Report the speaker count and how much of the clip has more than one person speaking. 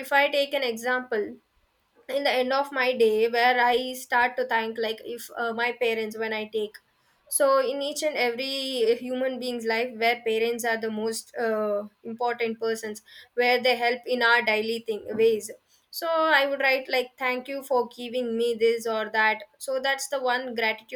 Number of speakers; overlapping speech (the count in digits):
1, no overlap